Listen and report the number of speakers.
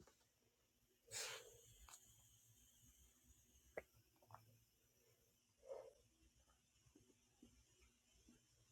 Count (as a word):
zero